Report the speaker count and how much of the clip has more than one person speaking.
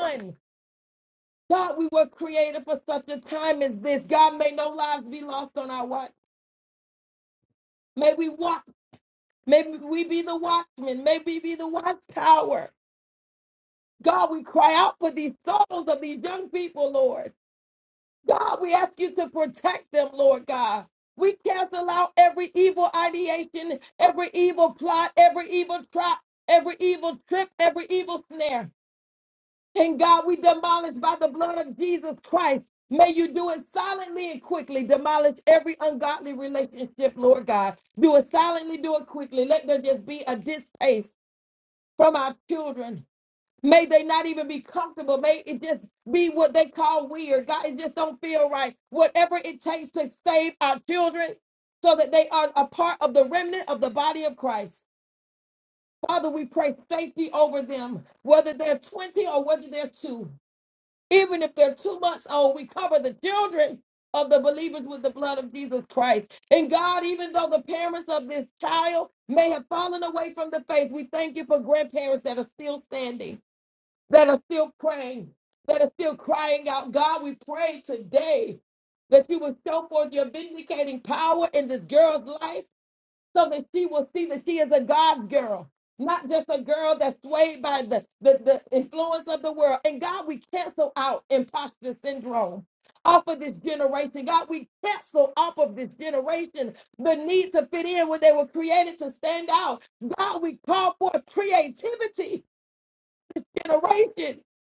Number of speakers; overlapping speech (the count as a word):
one, no overlap